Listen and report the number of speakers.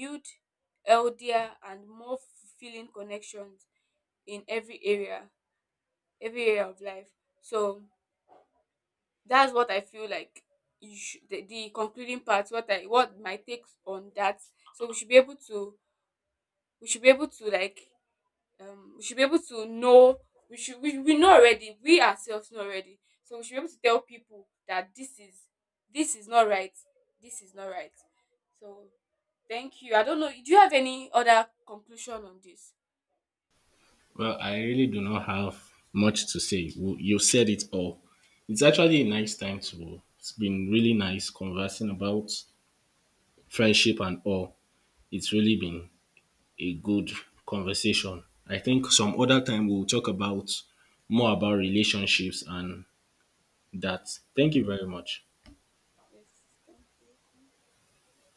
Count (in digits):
2